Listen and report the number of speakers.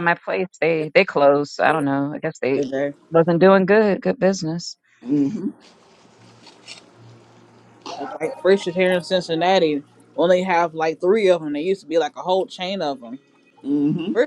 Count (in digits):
3